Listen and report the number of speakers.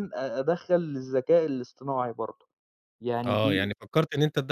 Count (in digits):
2